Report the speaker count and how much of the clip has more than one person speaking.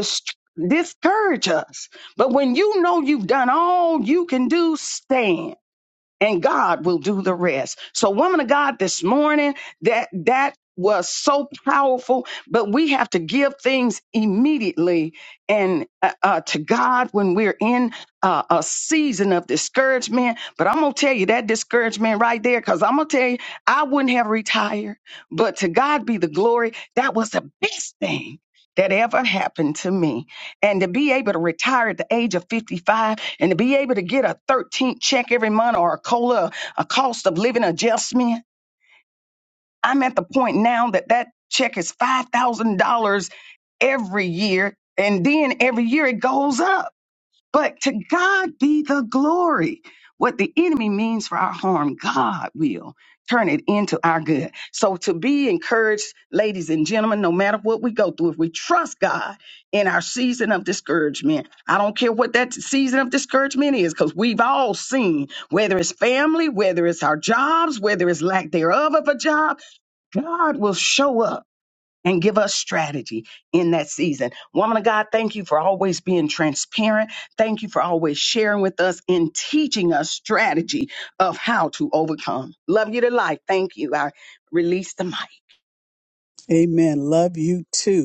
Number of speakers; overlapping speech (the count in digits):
2, no overlap